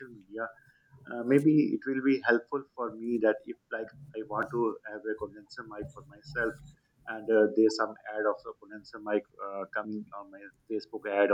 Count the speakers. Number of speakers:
one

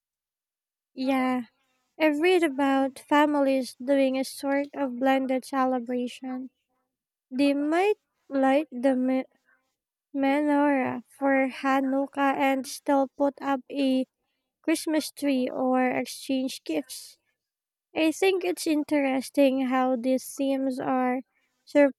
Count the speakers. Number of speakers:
one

